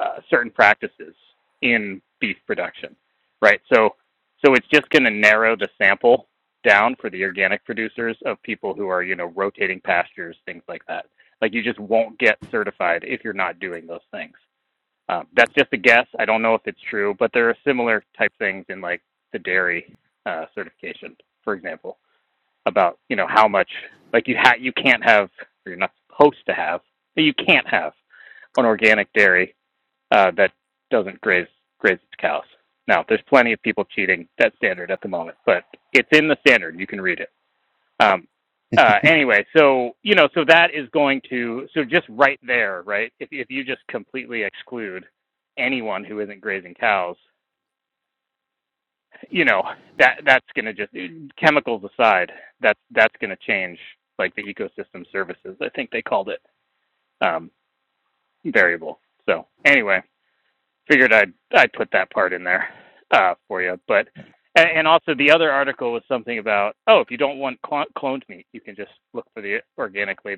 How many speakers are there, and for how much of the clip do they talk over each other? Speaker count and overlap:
one, no overlap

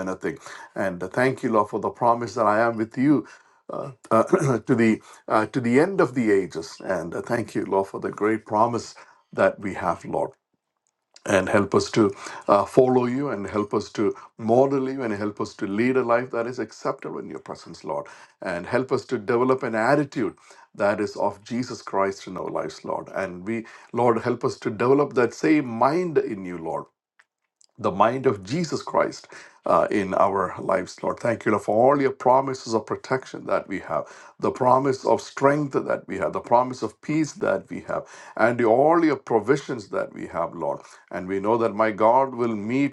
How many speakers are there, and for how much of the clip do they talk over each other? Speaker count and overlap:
one, no overlap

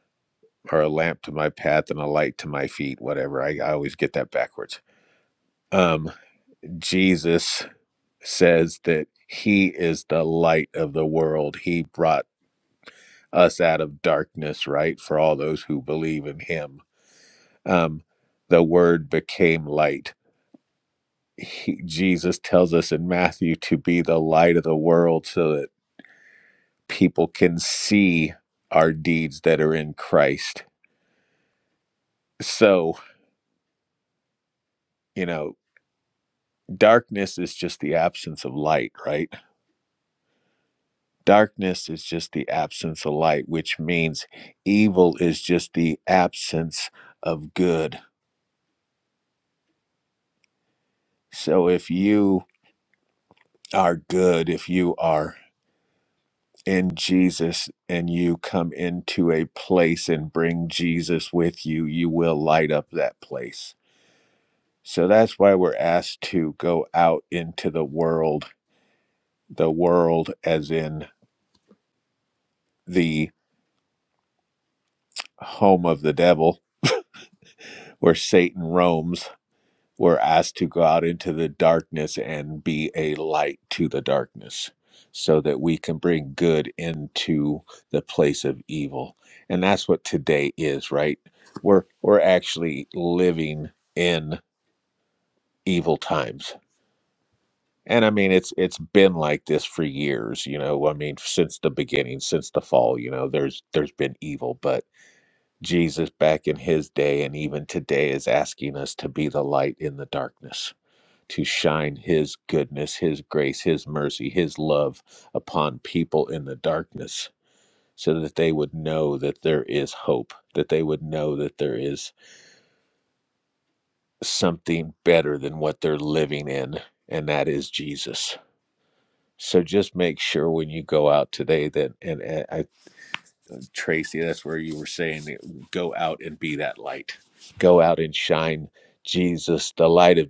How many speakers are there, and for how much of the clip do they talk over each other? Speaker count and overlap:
one, no overlap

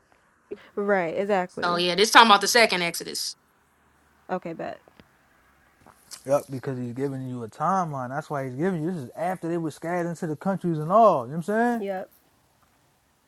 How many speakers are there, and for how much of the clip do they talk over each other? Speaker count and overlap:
three, about 2%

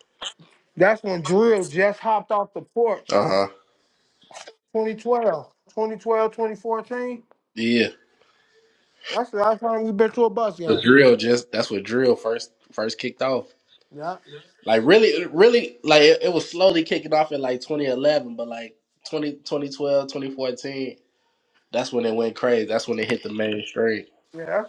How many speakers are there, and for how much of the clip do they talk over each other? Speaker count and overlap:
two, about 1%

